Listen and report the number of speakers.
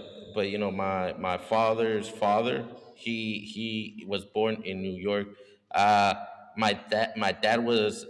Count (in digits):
1